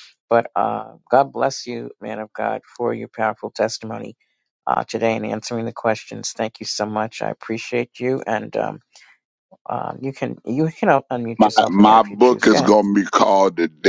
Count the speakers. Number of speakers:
2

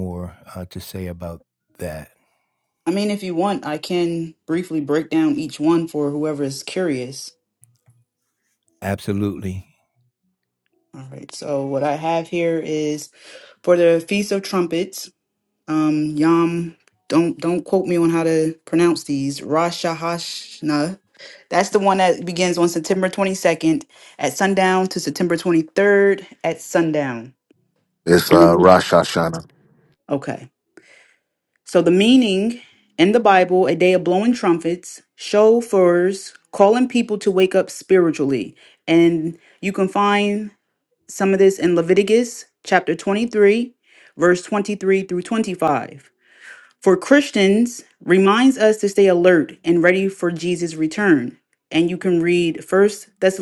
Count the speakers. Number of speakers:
3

